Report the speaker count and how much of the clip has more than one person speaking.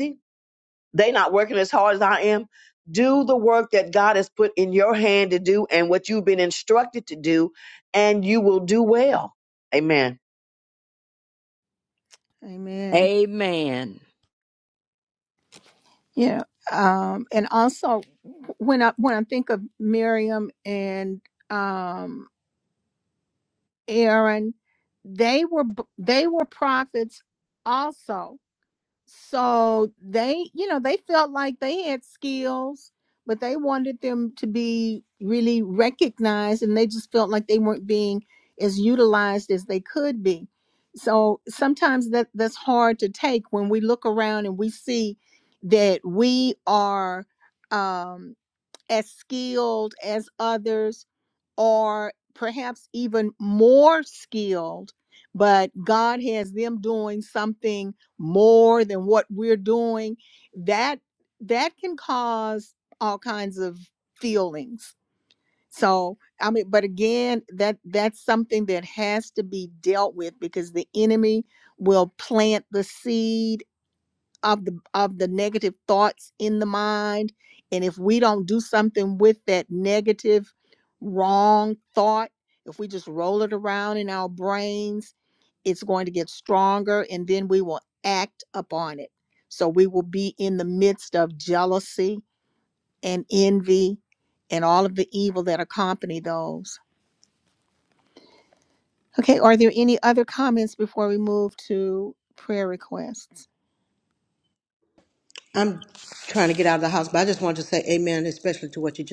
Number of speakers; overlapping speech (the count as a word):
four, under 1%